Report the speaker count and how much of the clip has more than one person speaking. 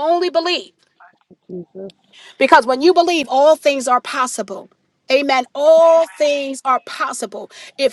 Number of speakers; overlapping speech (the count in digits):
2, about 8%